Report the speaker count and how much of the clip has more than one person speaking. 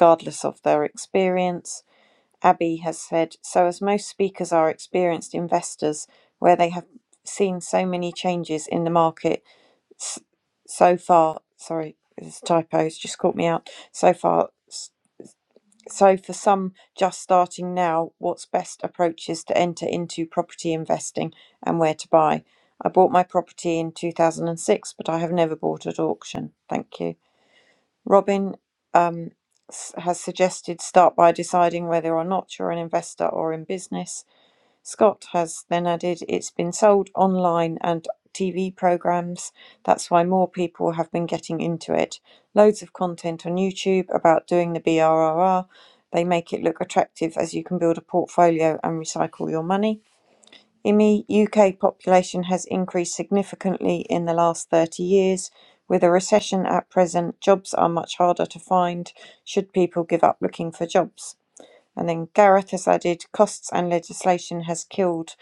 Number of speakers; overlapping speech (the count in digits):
1, no overlap